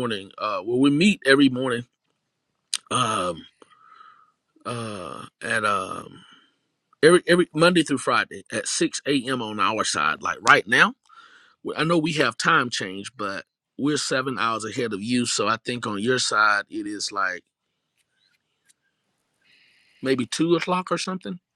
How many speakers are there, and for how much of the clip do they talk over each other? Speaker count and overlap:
one, no overlap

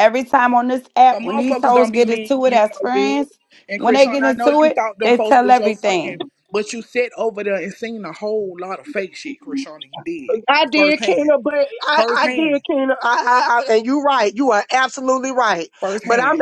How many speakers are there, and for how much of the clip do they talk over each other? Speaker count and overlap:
three, about 36%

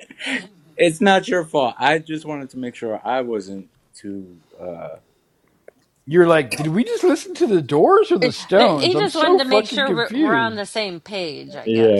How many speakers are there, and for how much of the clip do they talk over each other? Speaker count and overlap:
three, about 22%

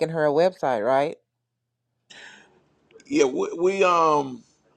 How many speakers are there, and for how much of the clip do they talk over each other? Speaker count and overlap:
two, no overlap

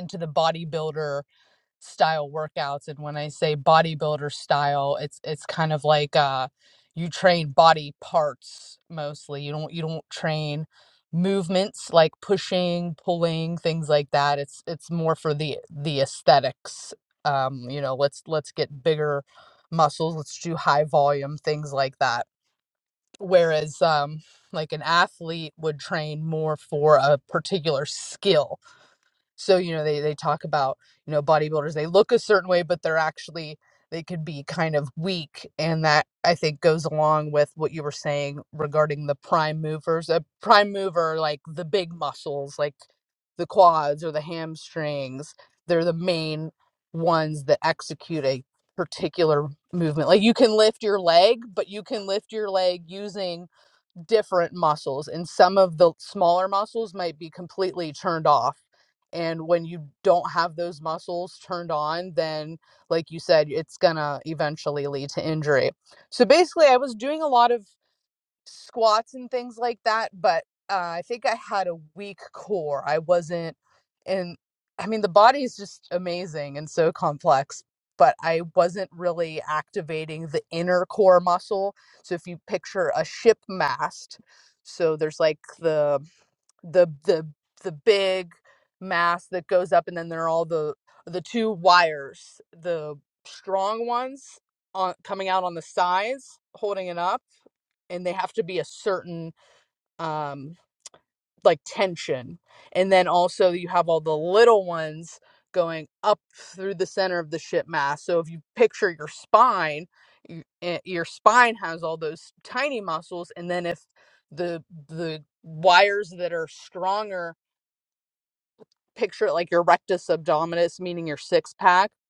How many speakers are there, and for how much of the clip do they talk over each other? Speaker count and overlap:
one, no overlap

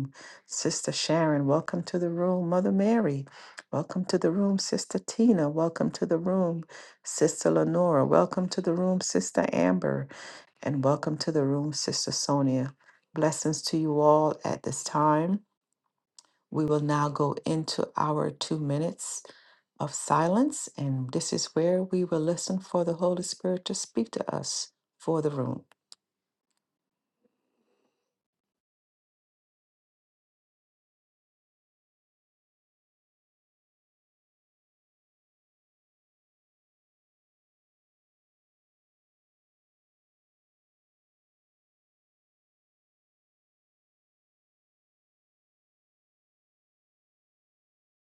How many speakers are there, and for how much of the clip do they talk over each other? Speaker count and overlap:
one, no overlap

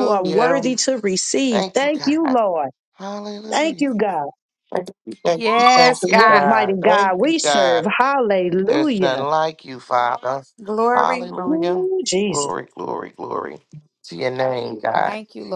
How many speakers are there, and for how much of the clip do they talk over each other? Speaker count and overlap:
three, about 35%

